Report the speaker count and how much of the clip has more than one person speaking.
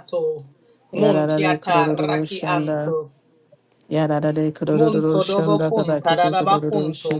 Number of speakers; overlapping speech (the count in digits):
2, about 61%